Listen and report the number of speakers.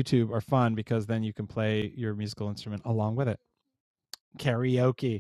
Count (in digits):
1